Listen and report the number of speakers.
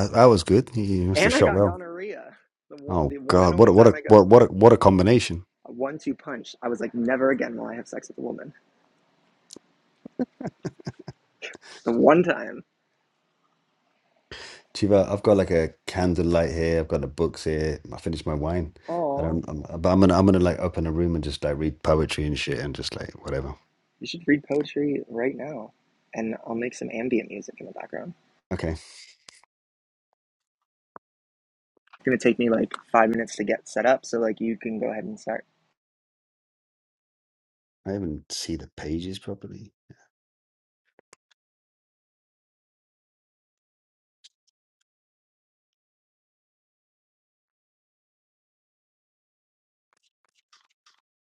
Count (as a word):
two